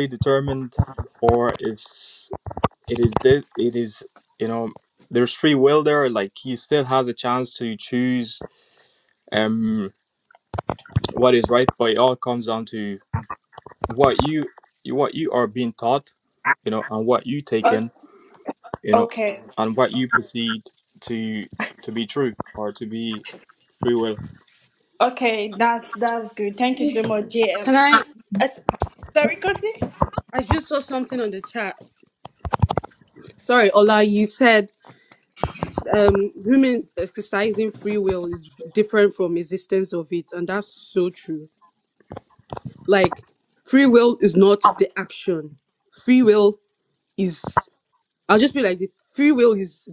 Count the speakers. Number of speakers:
three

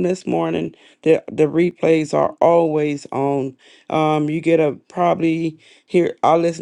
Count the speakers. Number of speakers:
one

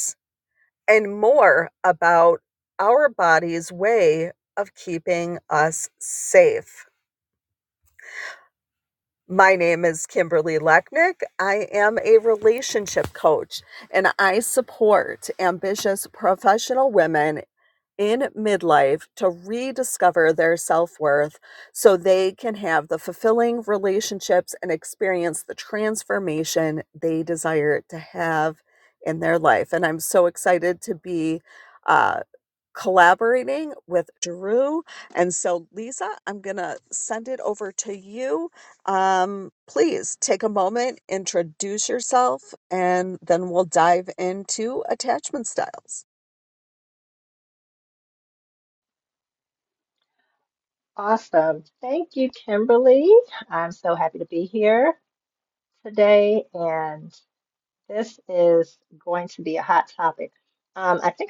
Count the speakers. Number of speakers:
two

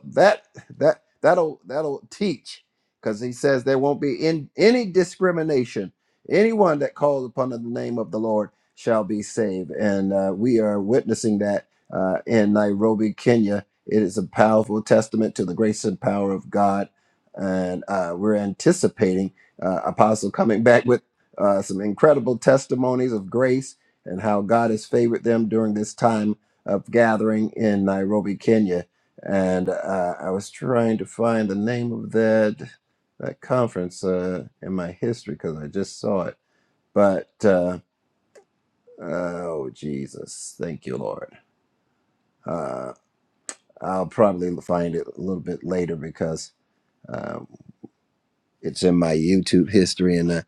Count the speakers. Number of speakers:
one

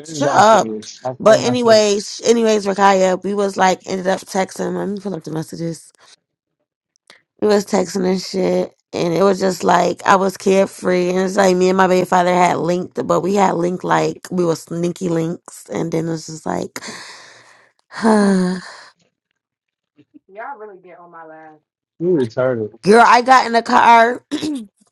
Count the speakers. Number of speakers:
three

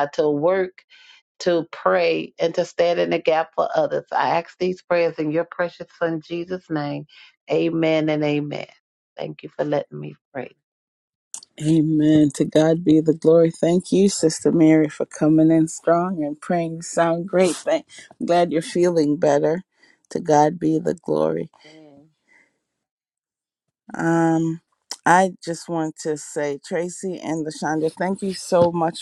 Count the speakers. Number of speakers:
two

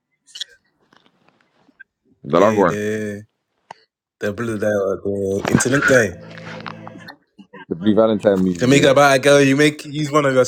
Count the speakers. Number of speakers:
two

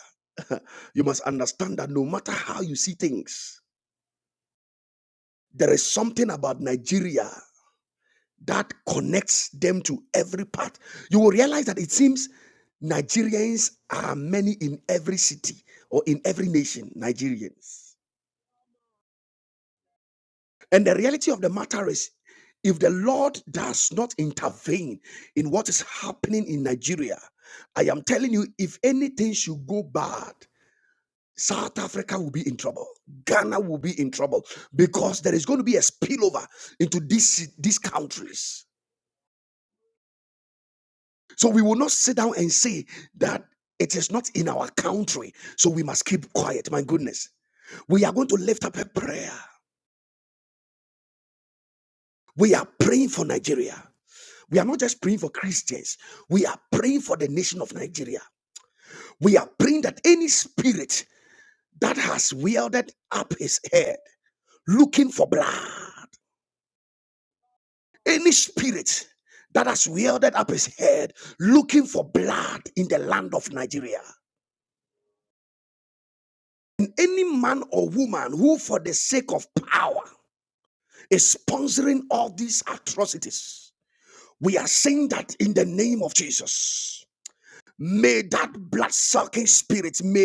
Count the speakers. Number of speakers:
one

